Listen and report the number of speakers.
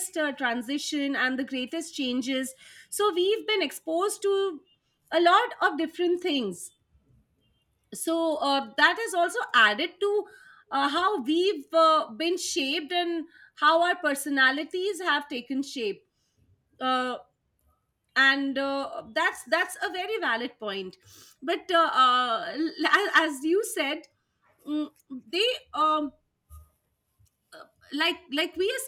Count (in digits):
1